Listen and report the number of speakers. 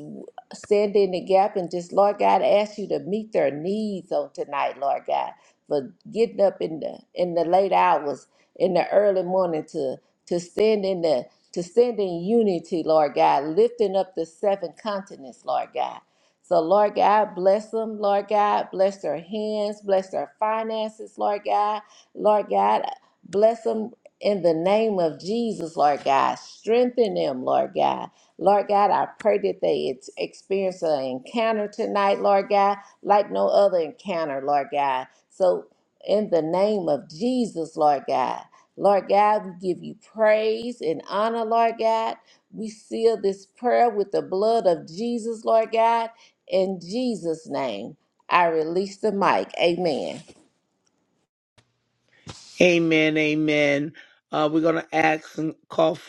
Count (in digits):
2